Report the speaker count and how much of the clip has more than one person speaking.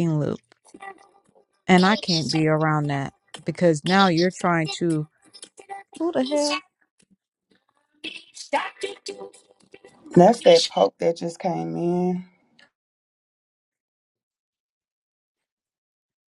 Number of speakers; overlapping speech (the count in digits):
3, about 10%